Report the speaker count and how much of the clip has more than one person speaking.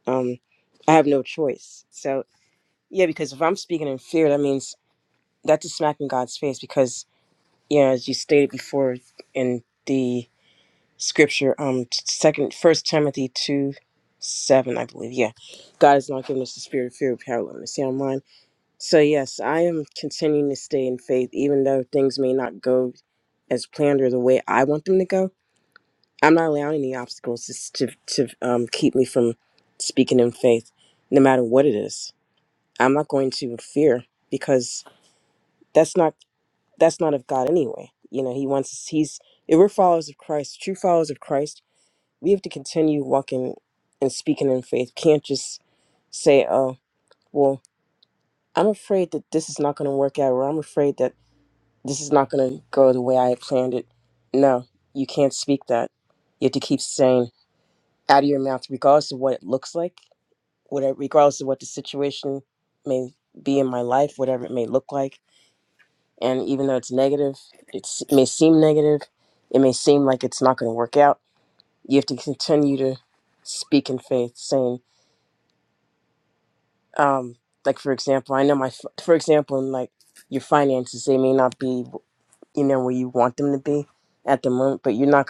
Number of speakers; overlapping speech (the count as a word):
one, no overlap